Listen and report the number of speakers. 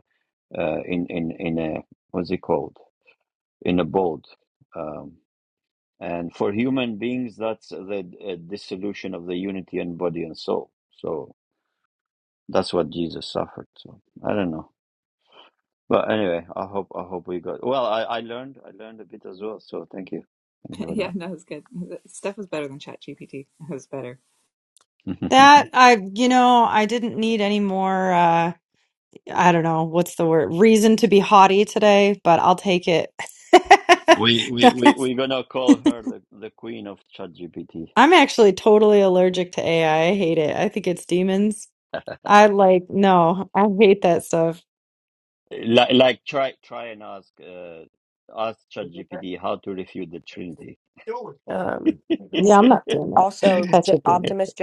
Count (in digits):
4